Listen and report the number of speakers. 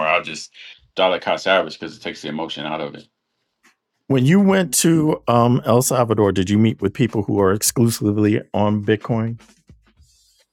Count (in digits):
2